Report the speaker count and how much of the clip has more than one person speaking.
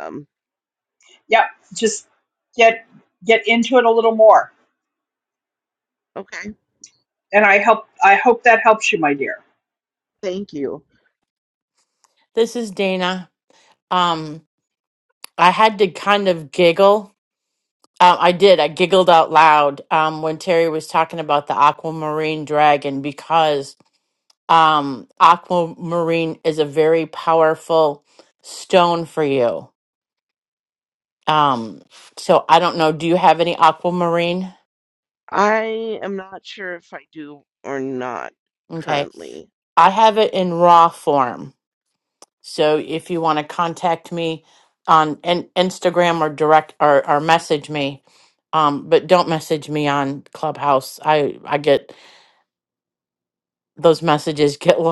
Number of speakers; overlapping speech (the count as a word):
three, about 1%